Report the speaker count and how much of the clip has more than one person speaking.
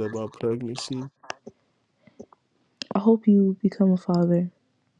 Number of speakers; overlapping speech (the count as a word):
two, no overlap